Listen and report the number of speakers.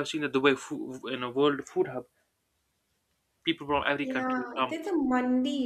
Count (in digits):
2